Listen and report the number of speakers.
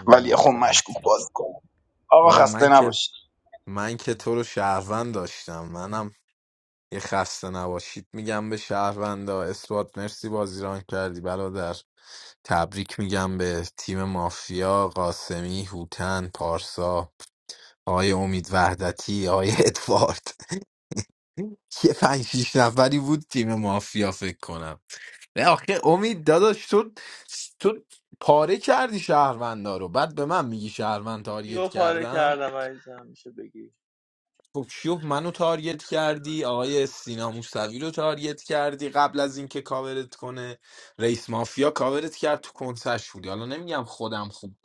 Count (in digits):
3